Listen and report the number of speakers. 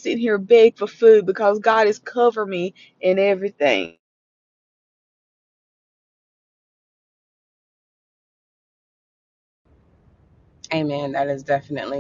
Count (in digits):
2